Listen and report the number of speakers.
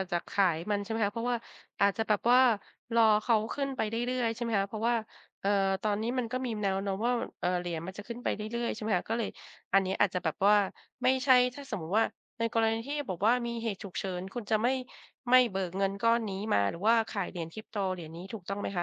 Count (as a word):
one